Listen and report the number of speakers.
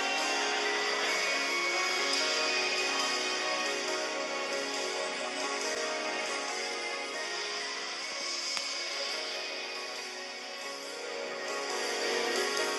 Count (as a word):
zero